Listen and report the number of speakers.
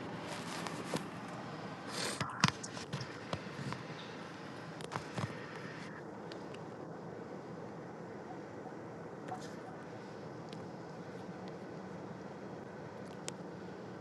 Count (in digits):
0